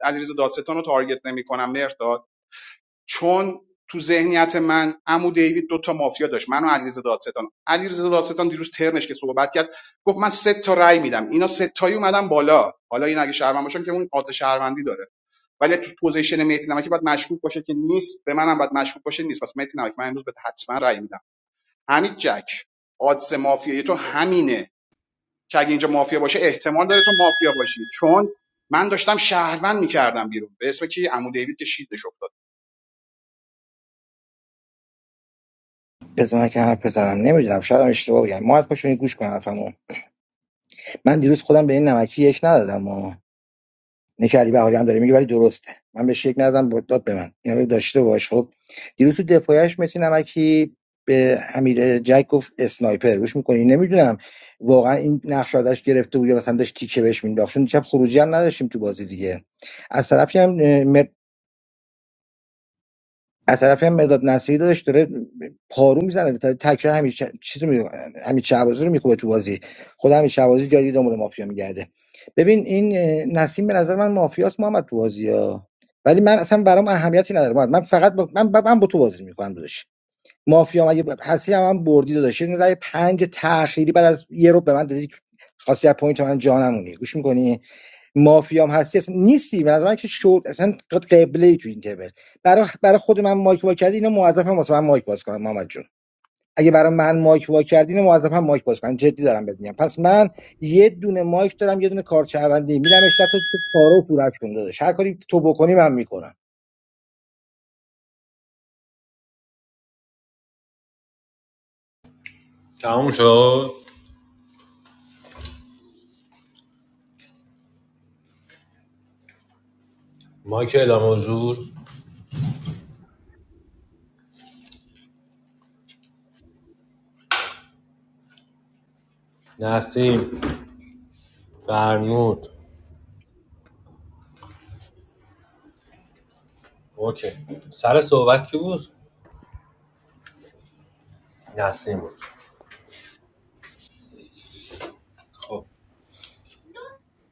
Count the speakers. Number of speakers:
three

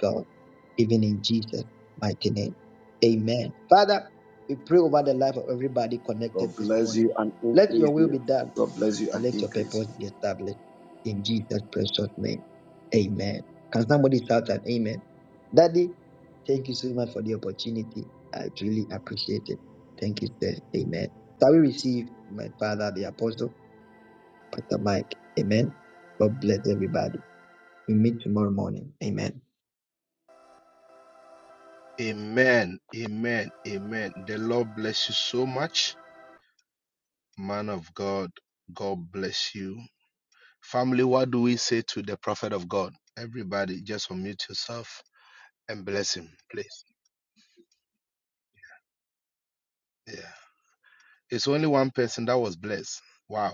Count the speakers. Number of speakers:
three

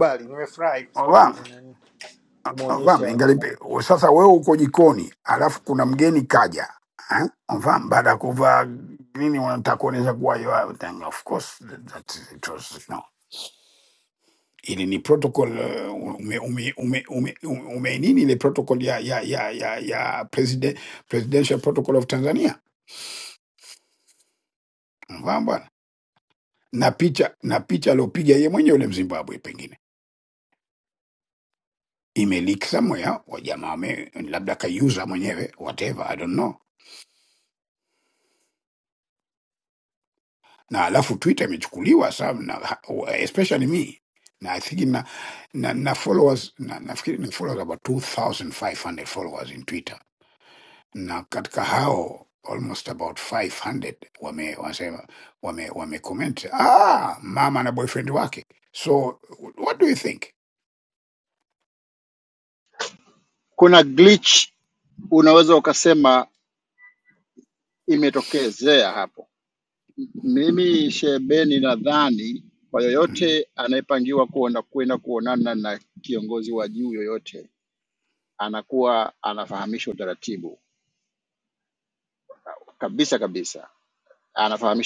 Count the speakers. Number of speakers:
three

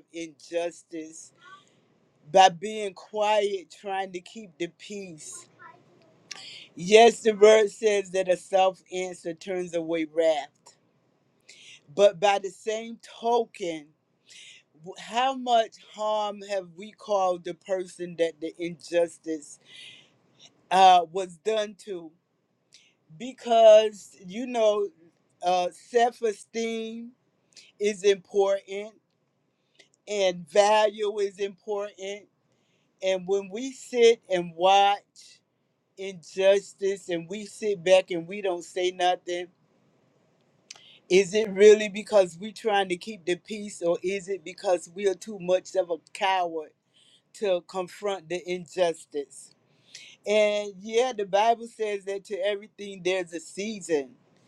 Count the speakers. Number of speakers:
one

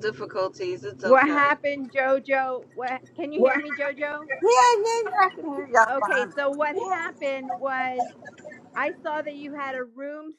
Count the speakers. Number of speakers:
three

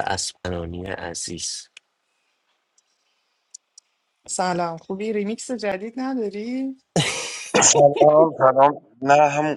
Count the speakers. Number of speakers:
three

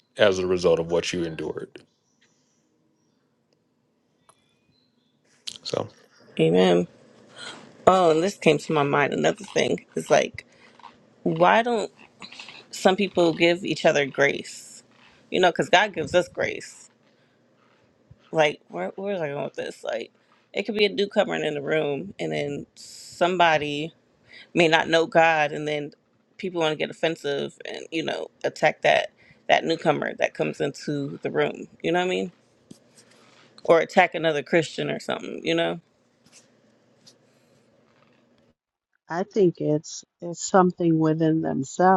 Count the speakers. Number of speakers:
three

